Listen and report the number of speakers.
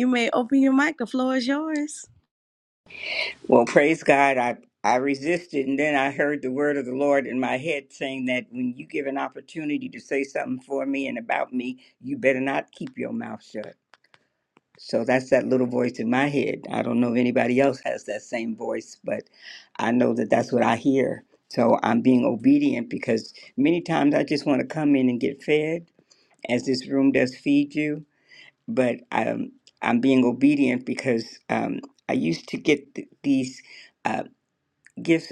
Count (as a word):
two